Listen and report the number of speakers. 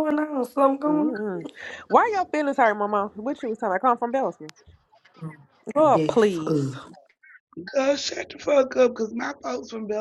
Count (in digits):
3